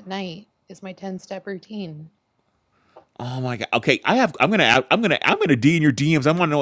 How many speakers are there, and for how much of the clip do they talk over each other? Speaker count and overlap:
2, no overlap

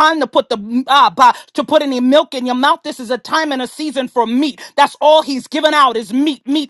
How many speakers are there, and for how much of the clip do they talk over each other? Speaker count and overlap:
1, no overlap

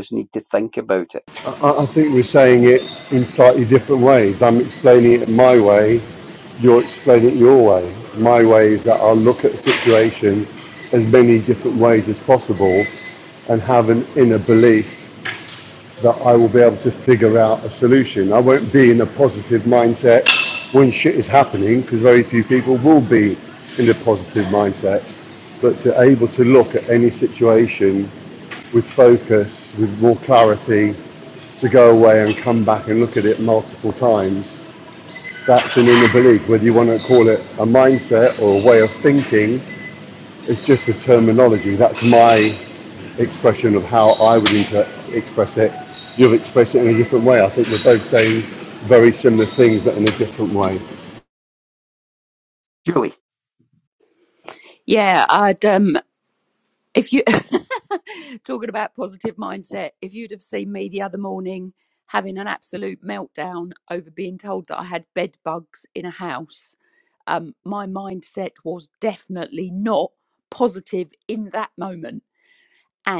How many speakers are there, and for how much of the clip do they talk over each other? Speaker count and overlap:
3, no overlap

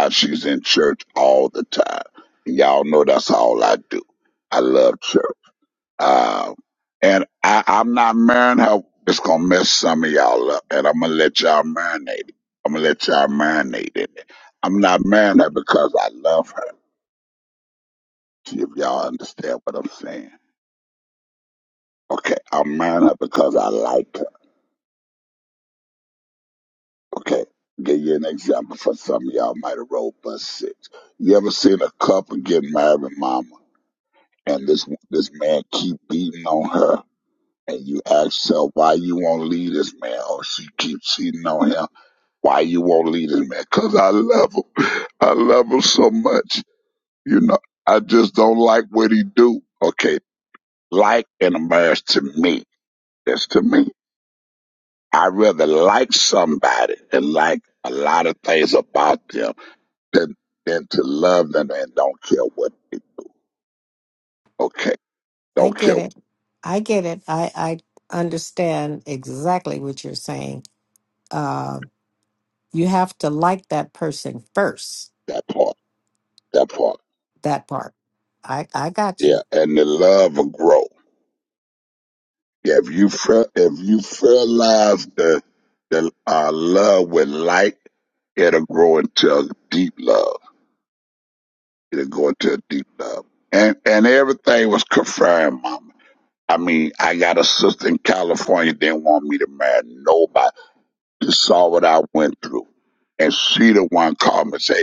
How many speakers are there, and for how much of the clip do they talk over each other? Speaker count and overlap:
2, about 1%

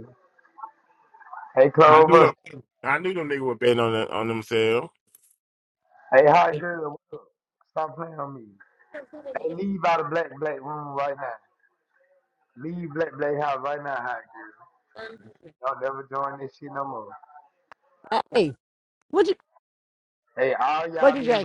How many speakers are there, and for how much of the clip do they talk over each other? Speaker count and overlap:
3, about 4%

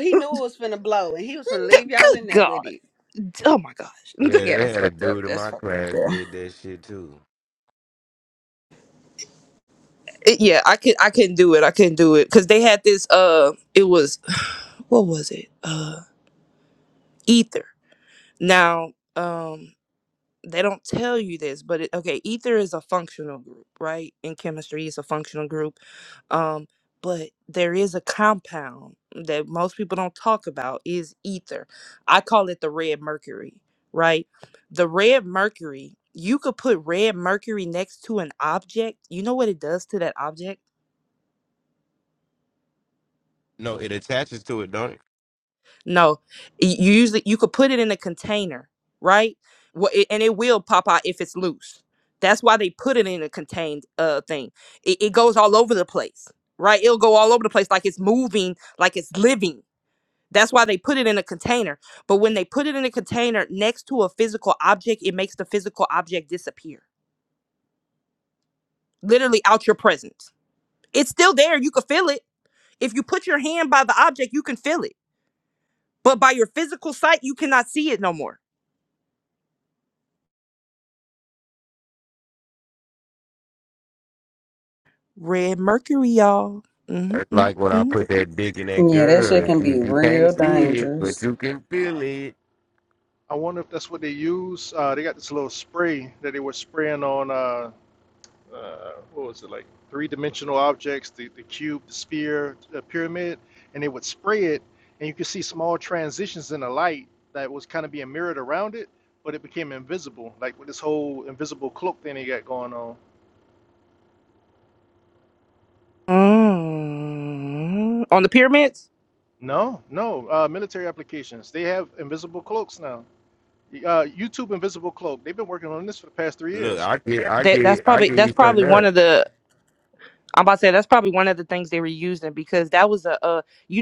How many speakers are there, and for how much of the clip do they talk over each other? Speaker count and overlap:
4, about 6%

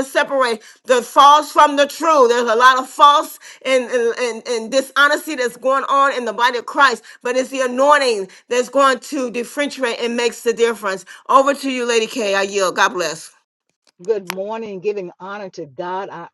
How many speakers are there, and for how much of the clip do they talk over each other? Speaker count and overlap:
2, no overlap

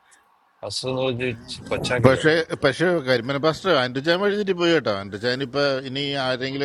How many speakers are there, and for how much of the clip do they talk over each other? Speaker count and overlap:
2, about 4%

